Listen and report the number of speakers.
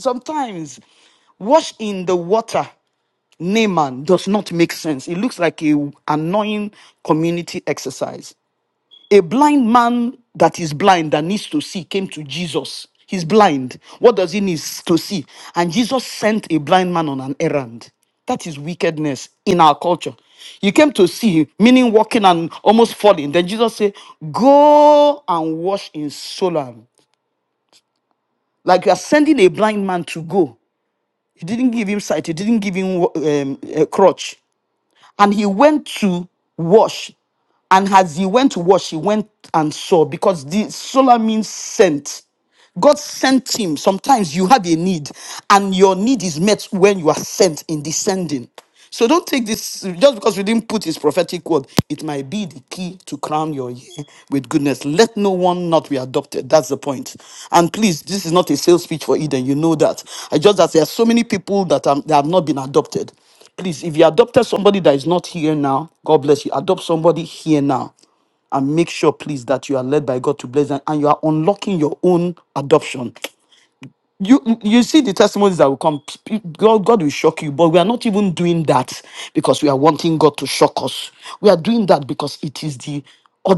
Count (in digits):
1